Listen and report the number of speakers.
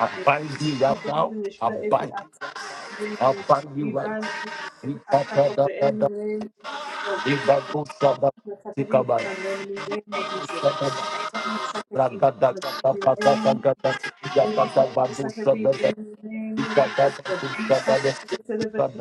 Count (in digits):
2